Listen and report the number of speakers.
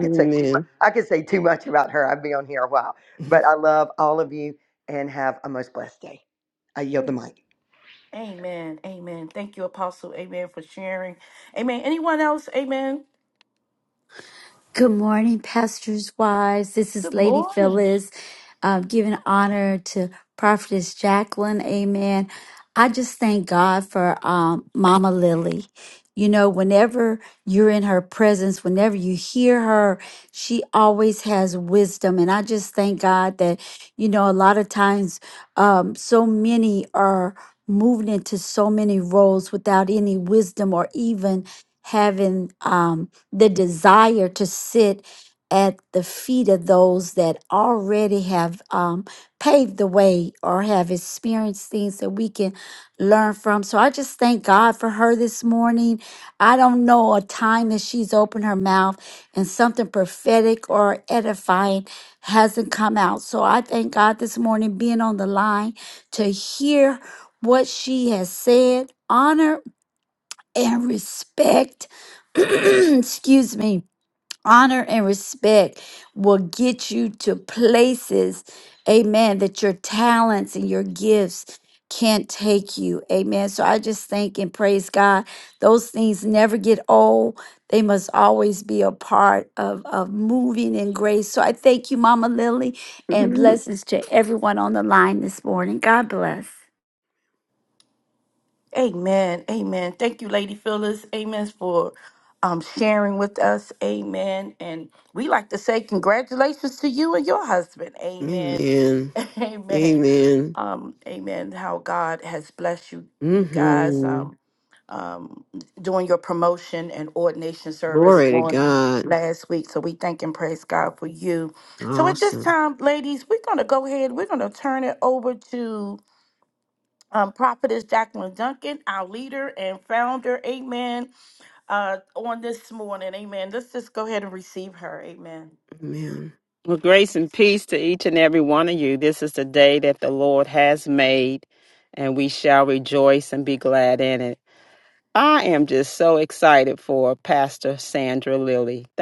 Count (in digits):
5